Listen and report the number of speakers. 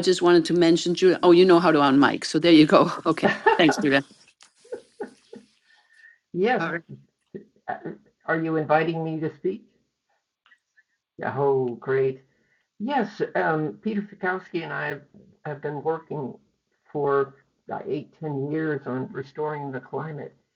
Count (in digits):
2